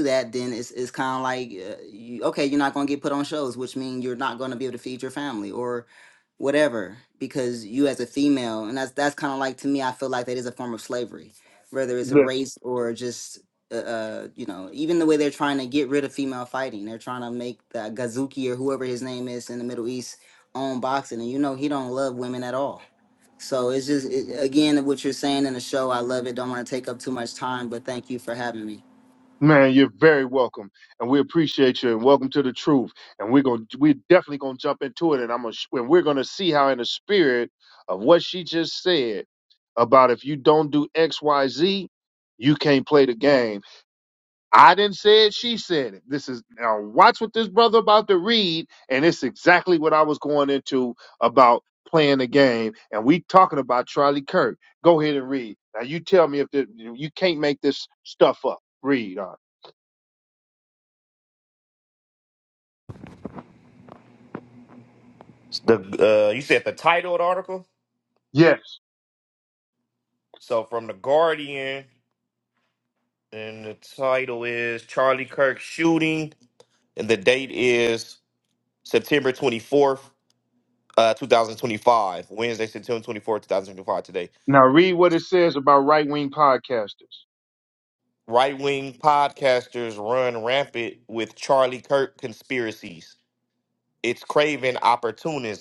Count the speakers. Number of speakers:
3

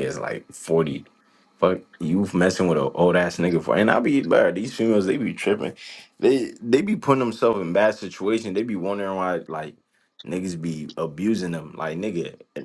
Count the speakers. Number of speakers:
1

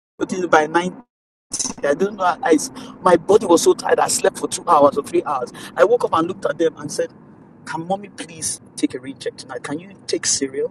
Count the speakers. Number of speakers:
1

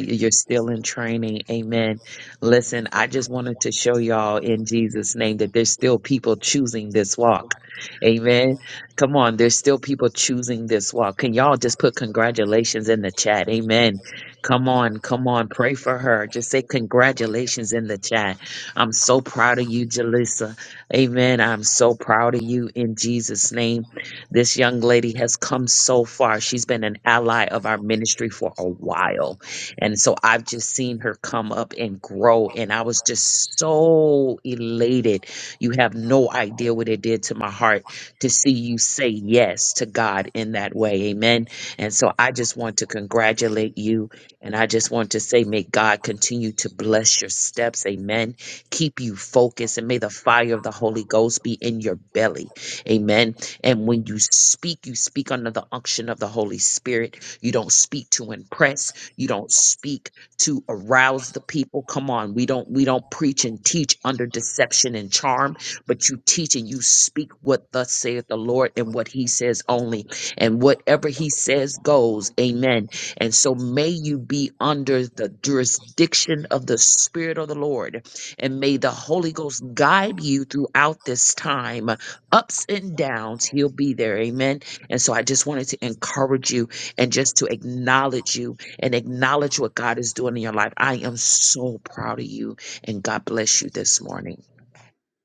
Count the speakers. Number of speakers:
1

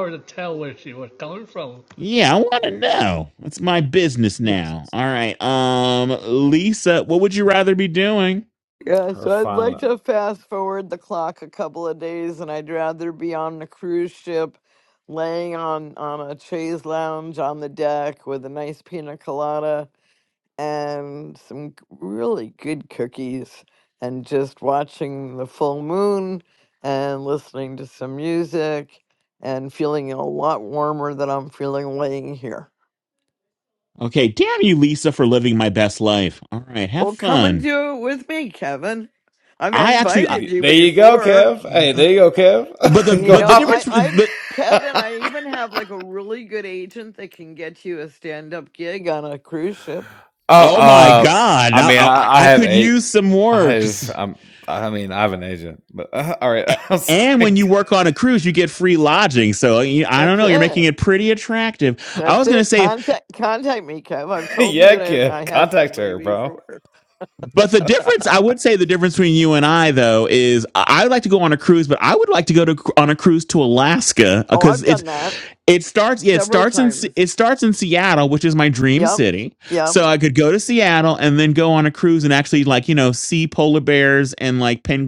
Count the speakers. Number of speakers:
4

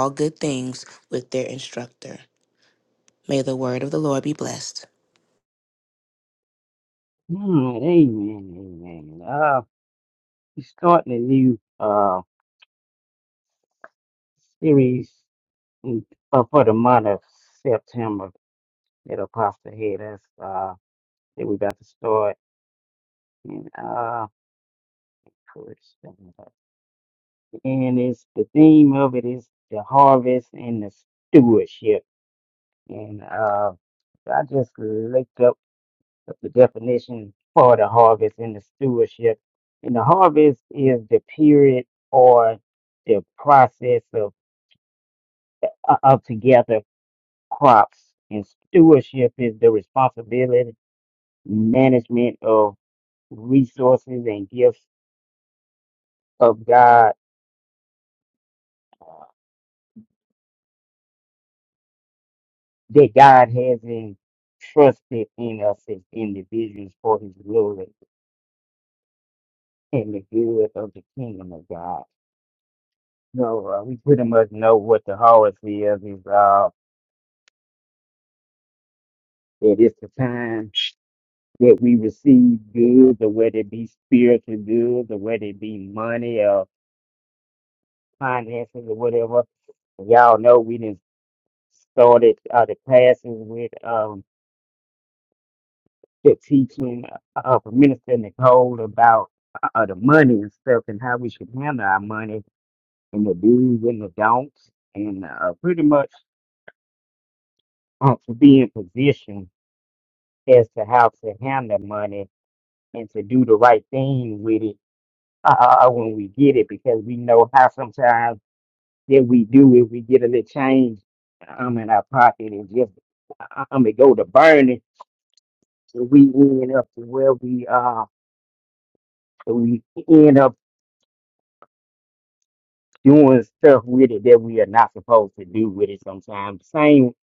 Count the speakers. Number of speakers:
2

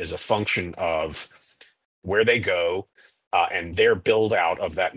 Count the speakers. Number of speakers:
1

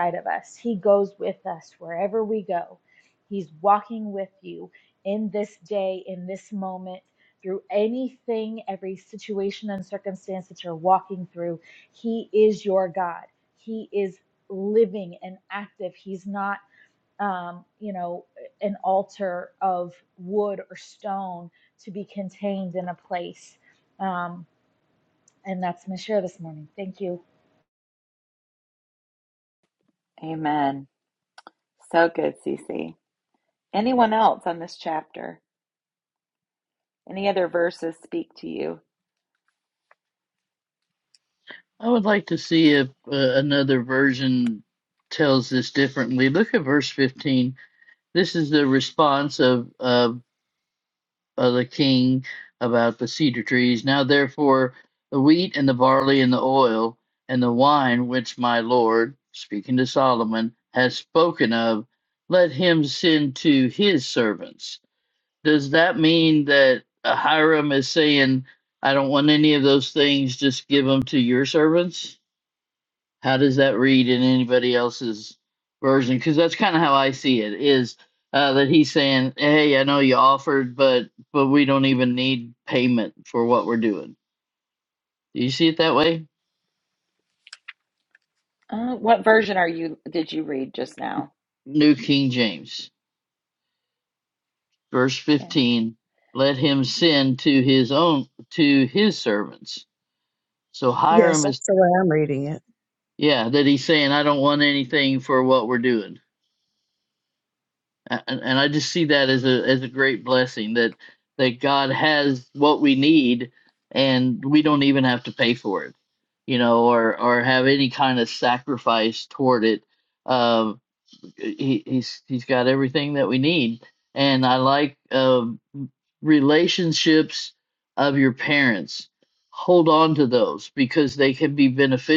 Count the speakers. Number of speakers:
4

